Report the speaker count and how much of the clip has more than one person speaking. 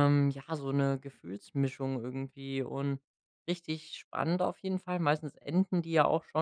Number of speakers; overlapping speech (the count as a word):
one, no overlap